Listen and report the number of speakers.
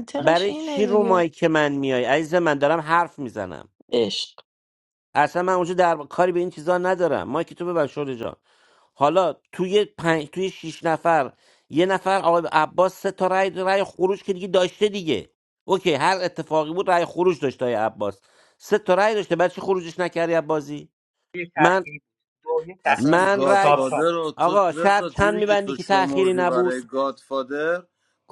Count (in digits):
4